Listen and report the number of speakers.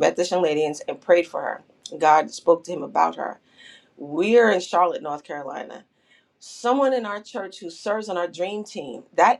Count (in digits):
1